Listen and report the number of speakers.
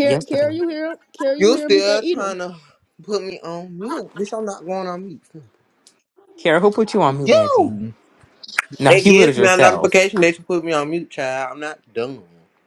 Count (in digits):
3